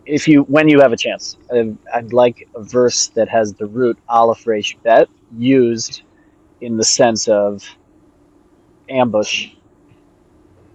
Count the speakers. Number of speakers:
1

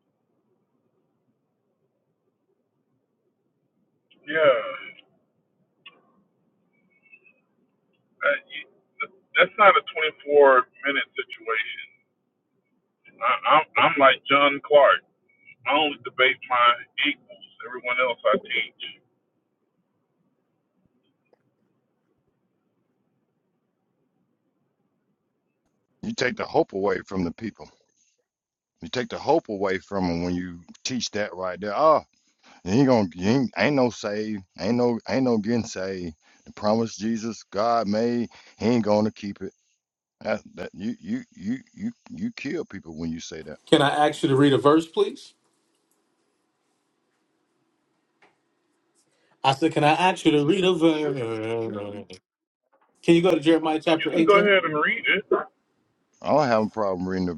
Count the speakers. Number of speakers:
3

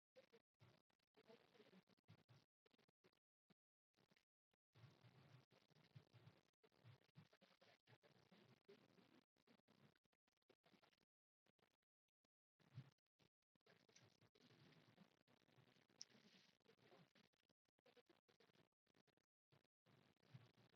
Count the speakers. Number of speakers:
0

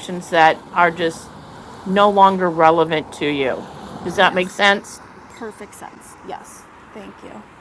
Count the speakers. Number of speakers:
2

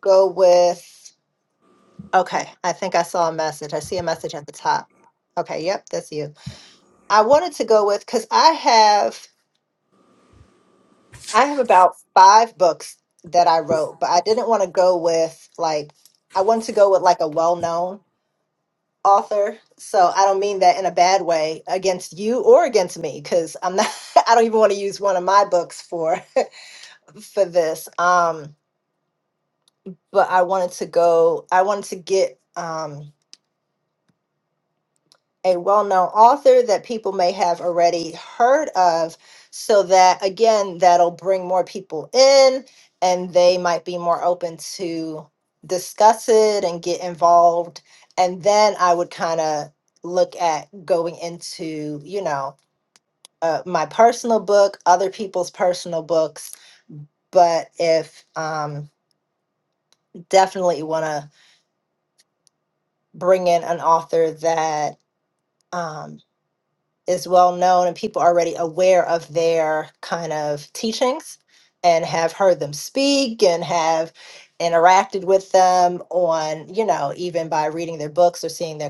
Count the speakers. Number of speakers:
1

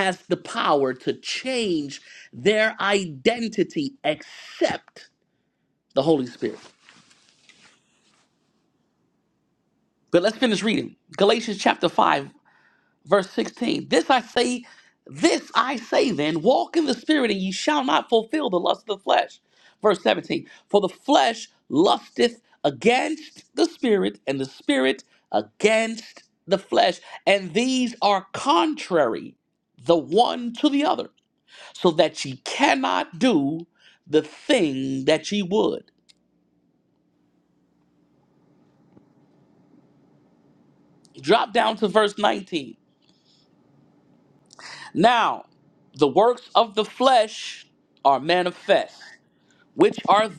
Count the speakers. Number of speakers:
1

